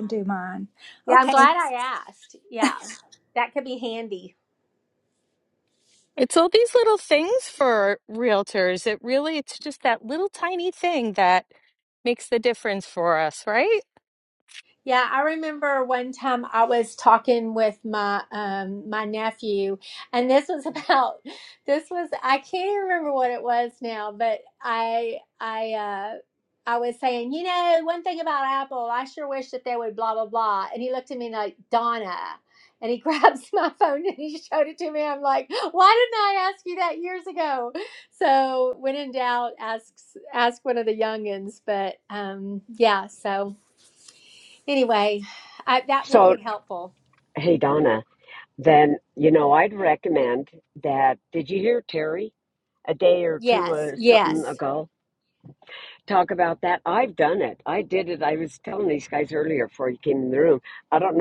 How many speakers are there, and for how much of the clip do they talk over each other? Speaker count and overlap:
four, about 3%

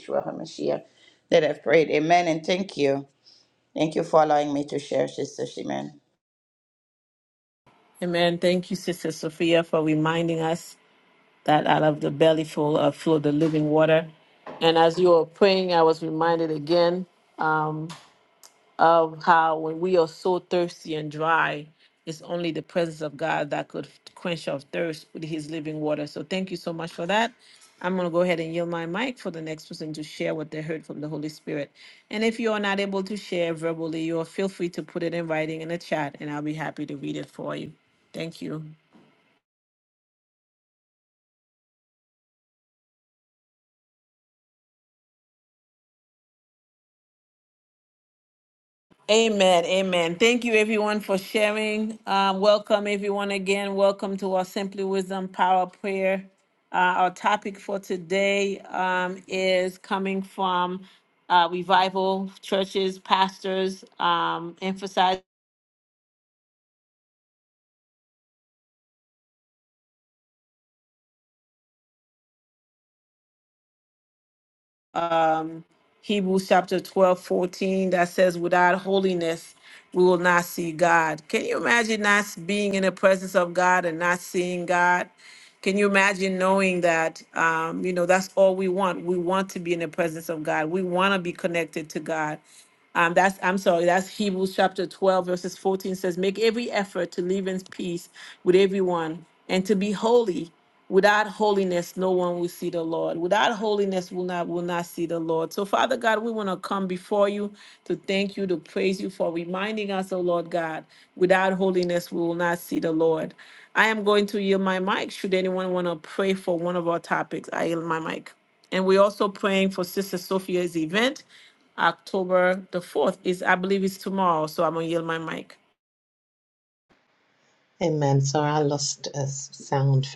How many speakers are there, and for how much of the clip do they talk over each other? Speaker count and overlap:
three, no overlap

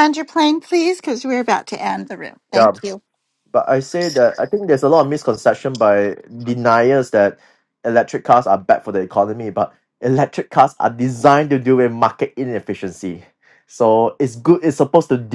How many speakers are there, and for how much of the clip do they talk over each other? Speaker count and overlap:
two, about 1%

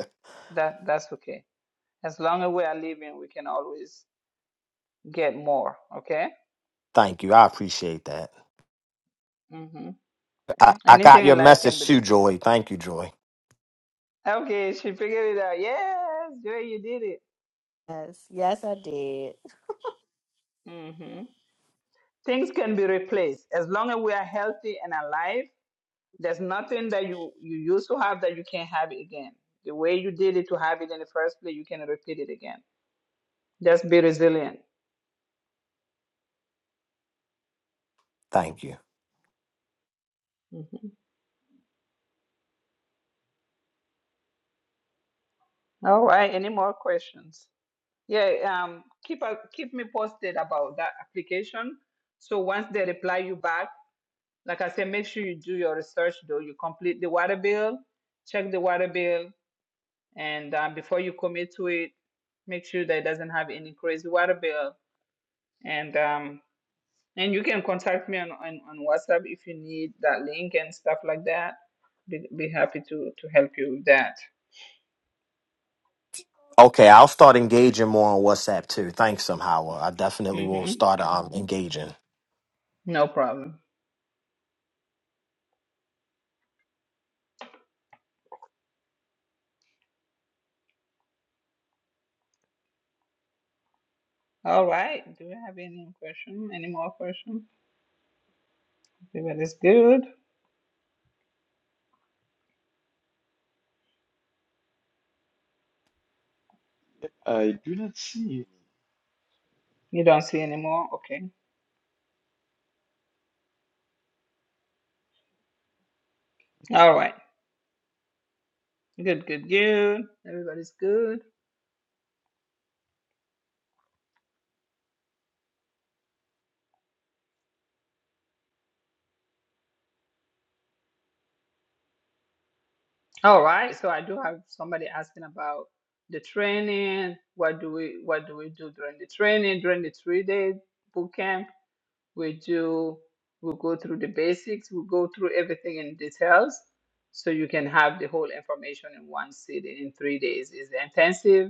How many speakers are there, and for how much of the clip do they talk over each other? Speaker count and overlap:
four, about 1%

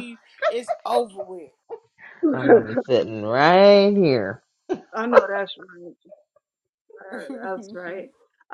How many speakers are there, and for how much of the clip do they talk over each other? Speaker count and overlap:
three, about 4%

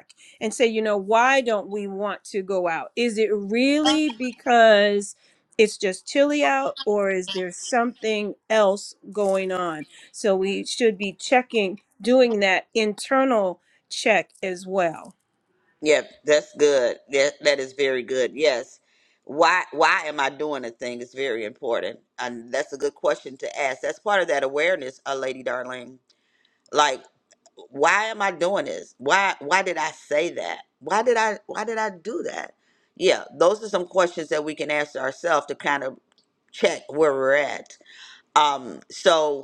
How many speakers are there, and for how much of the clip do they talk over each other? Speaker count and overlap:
two, no overlap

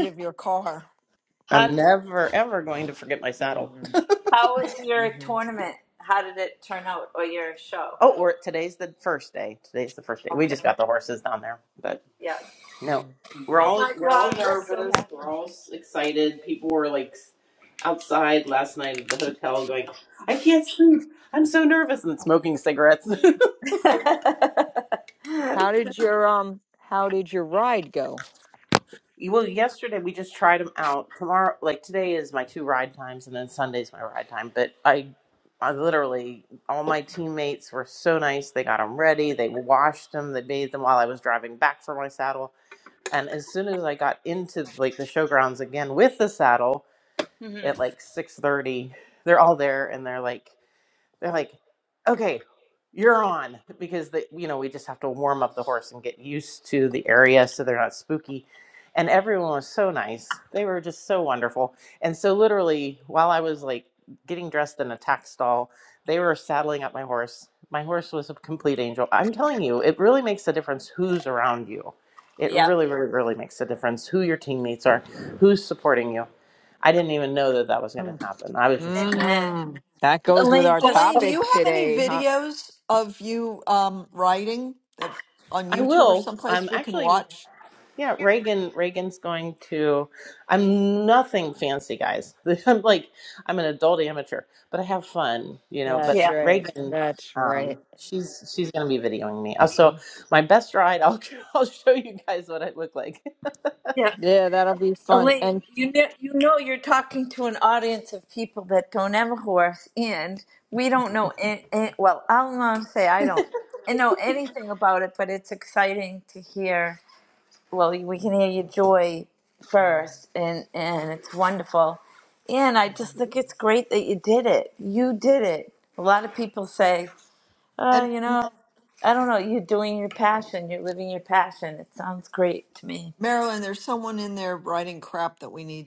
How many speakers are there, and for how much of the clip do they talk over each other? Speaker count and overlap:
four, about 7%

